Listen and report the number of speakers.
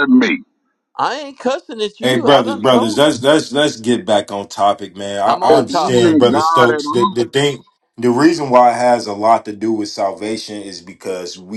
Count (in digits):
3